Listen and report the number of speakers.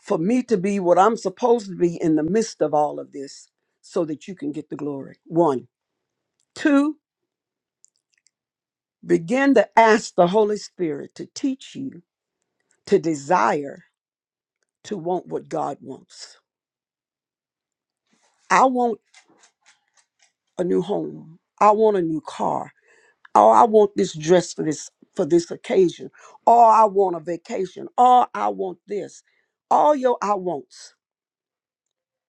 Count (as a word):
one